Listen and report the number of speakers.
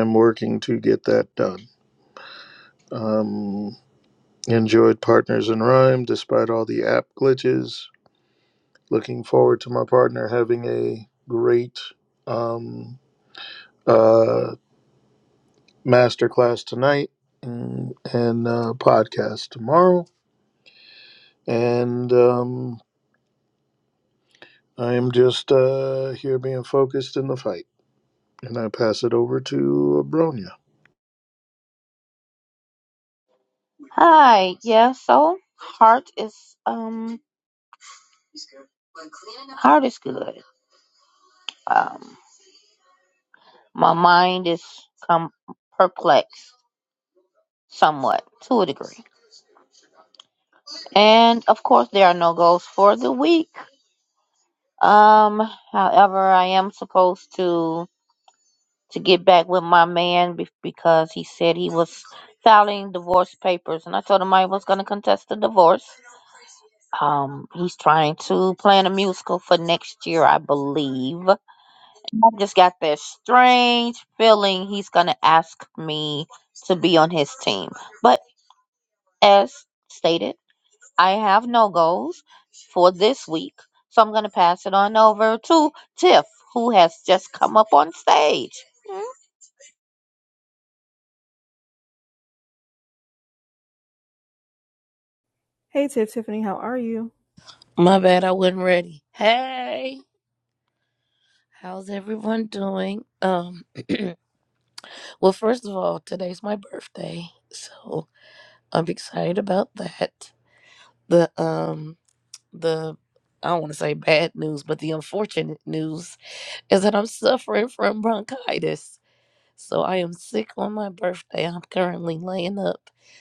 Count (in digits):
4